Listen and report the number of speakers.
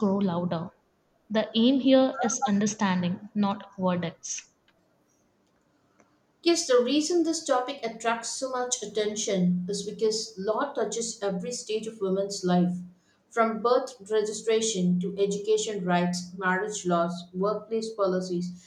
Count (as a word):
two